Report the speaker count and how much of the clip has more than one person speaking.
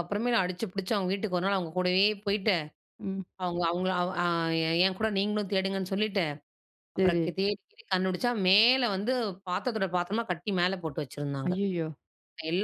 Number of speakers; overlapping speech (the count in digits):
2, about 4%